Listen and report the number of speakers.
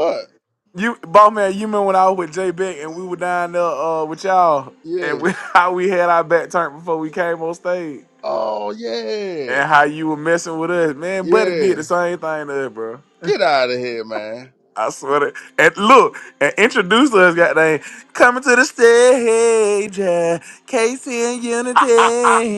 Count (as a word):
two